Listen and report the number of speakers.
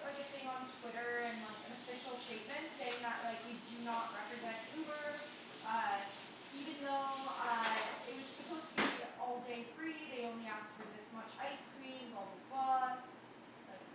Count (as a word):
one